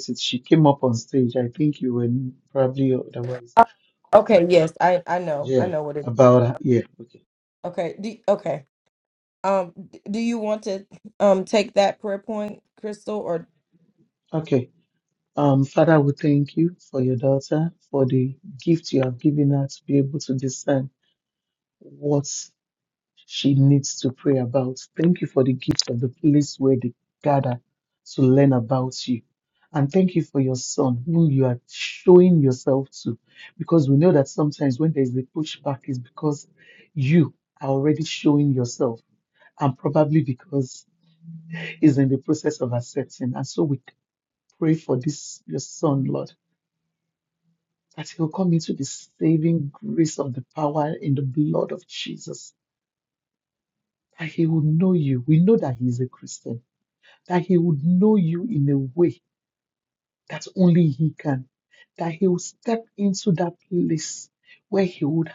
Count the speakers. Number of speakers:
2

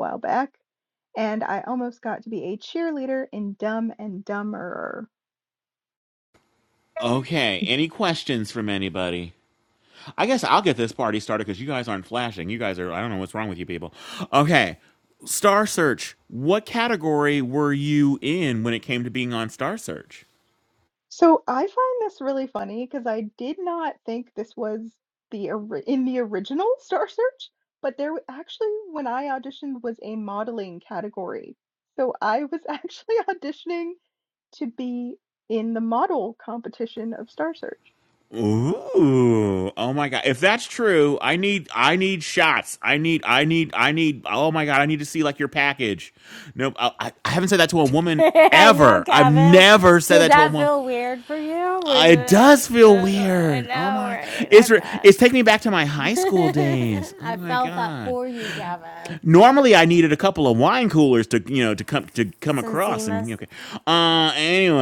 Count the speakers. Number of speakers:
3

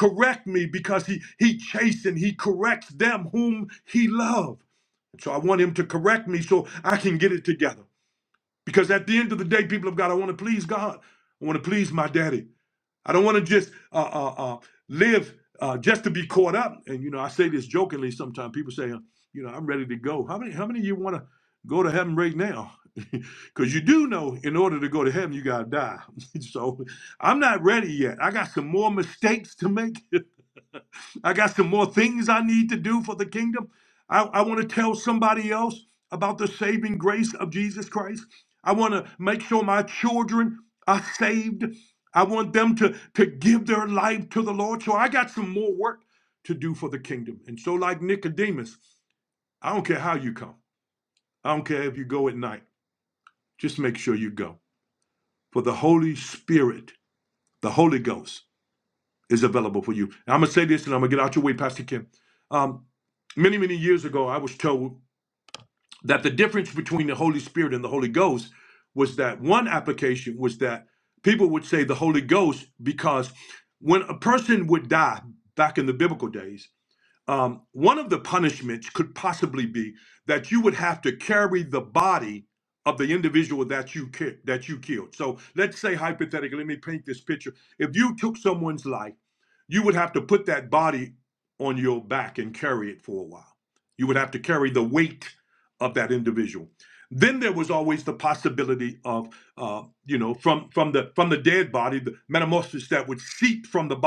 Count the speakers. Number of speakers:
1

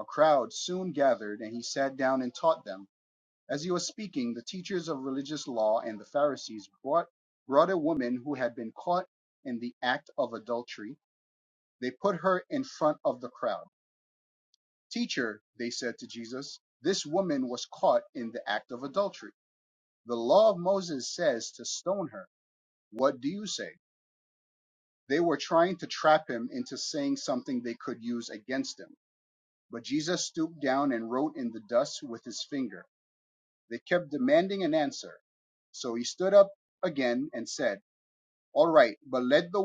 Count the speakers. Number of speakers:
1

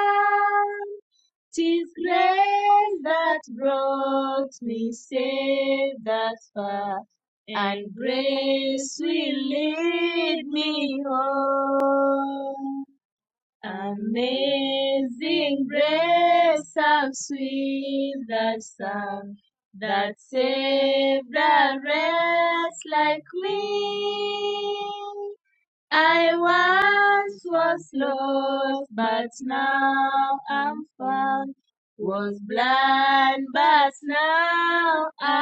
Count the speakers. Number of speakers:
1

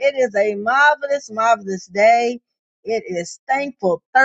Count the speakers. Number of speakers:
1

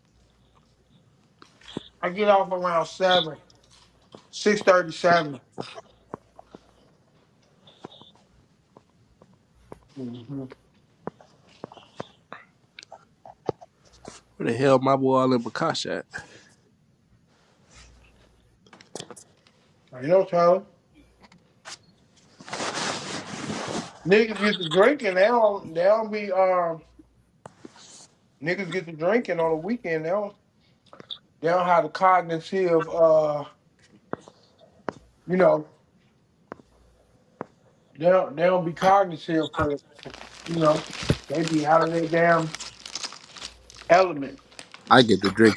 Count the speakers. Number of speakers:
2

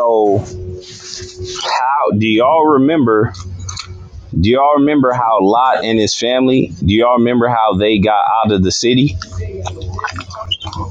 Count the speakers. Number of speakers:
1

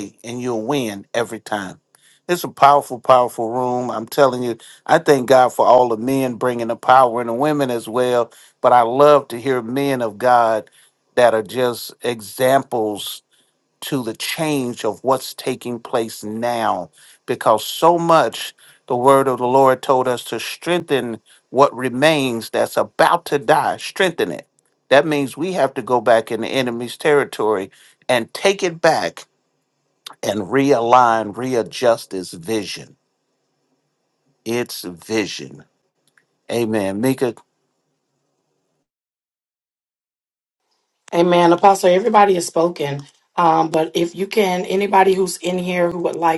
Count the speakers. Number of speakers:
2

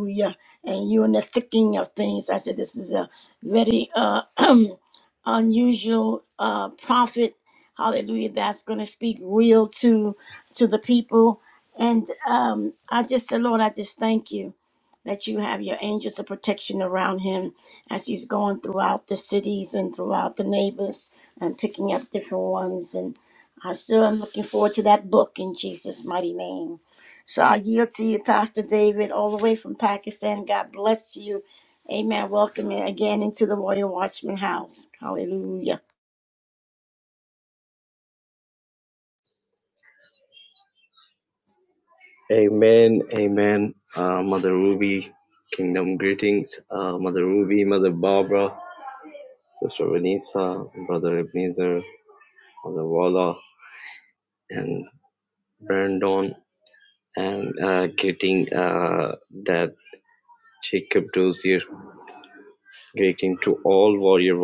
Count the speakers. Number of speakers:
2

